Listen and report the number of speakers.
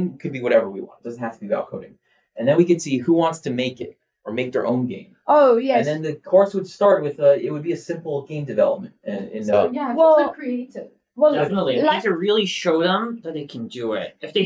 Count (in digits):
4